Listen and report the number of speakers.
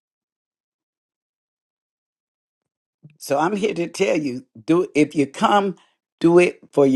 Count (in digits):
1